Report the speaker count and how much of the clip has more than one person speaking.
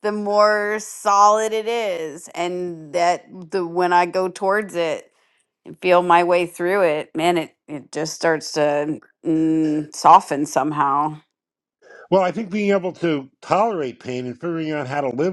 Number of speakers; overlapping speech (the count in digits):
2, no overlap